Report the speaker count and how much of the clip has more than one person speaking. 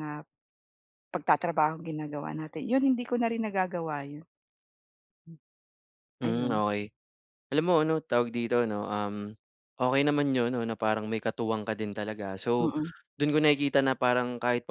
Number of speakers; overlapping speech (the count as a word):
two, about 3%